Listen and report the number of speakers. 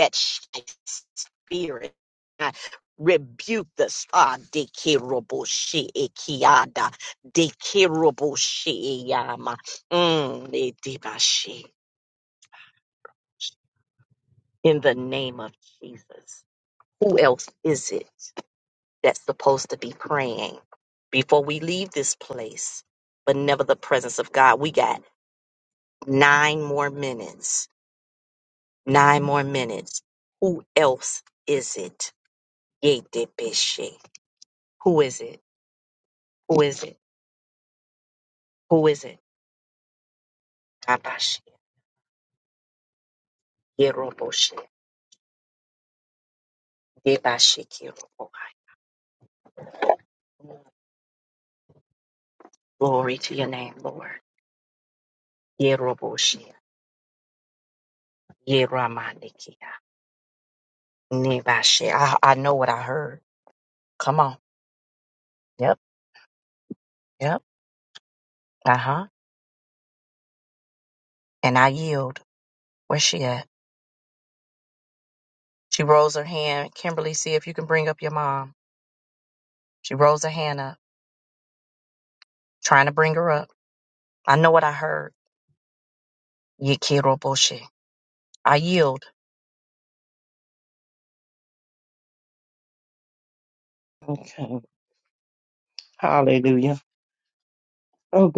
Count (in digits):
2